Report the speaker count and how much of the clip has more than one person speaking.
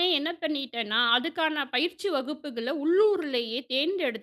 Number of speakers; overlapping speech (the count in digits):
1, no overlap